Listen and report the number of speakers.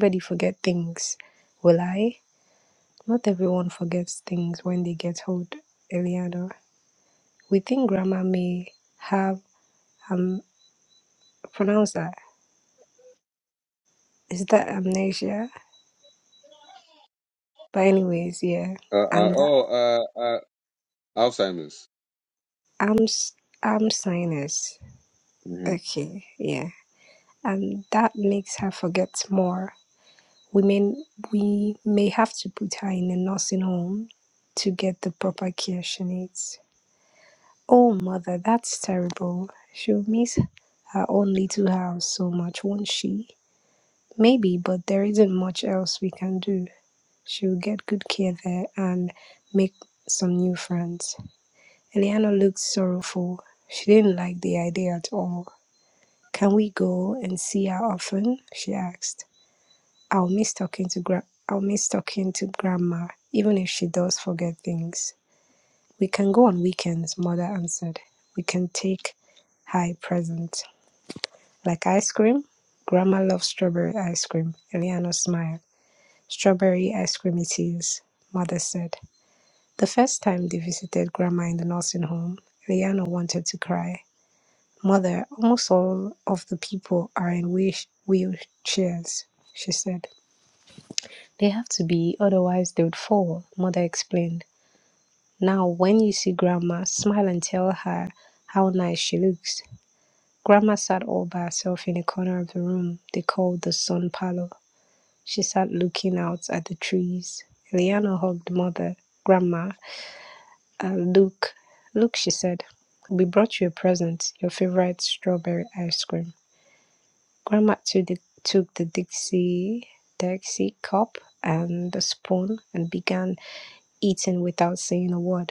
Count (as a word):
two